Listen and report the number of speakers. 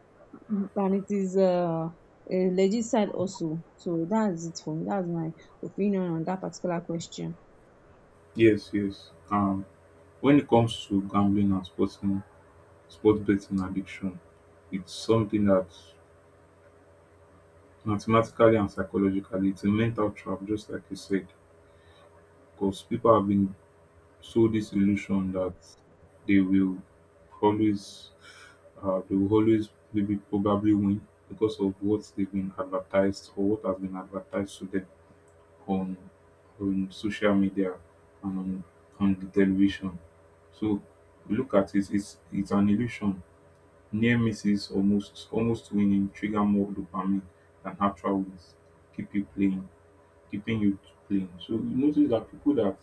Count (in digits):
2